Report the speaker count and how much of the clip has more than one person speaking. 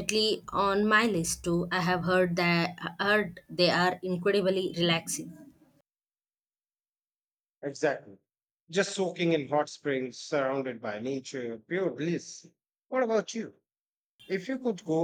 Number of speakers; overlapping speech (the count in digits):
2, no overlap